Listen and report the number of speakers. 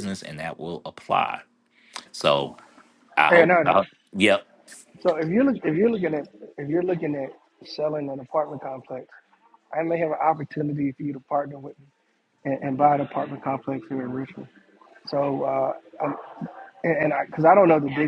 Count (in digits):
2